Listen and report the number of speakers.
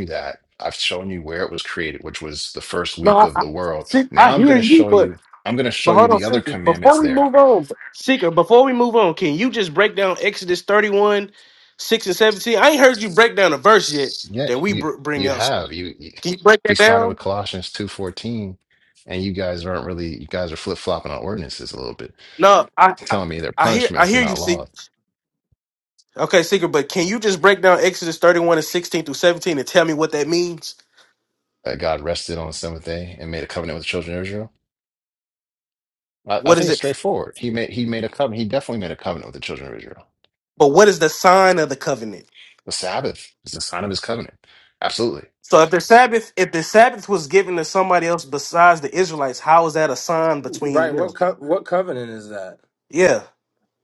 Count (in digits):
3